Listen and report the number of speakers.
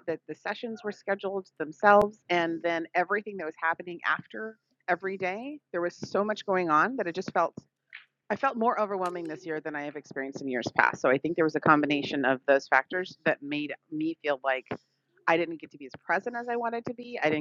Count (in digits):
1